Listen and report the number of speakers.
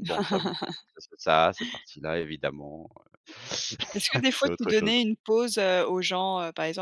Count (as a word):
two